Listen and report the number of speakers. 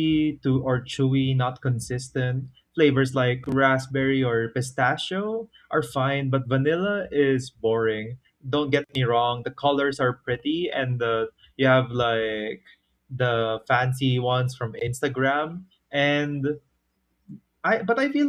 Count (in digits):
1